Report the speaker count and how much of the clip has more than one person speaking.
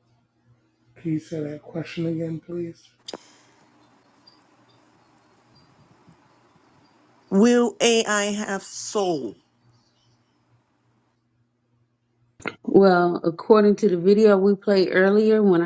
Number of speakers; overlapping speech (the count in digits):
3, no overlap